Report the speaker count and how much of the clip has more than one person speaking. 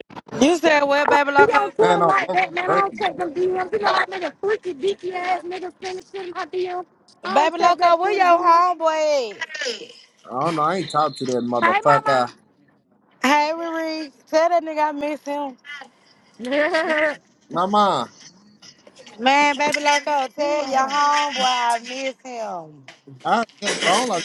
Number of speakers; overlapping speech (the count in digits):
3, about 18%